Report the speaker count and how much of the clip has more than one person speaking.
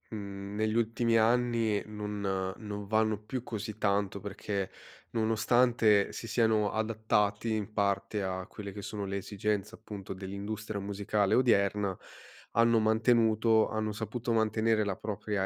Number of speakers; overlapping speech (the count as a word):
one, no overlap